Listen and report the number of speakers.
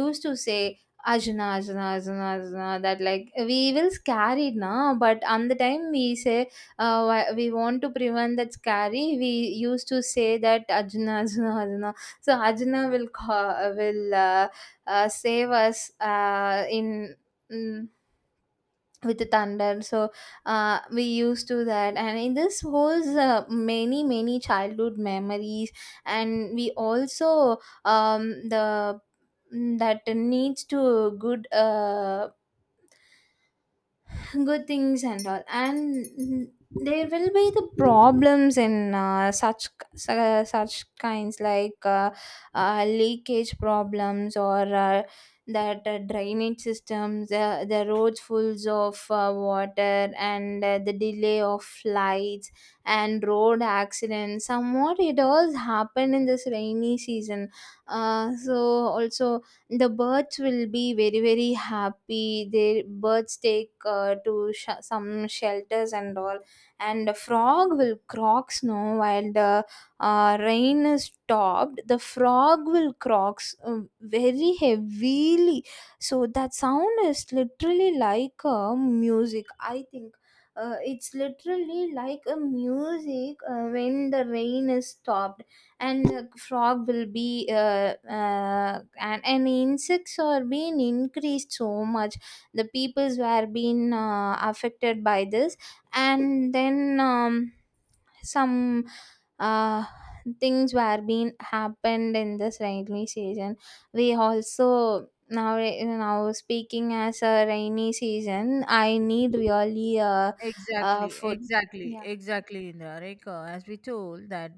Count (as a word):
two